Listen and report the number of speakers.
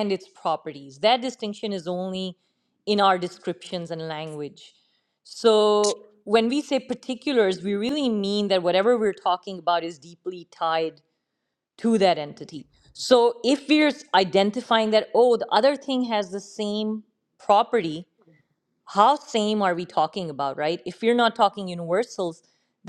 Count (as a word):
one